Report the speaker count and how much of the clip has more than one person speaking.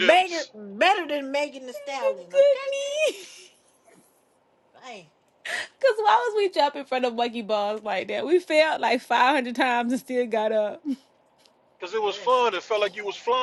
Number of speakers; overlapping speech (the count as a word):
three, about 7%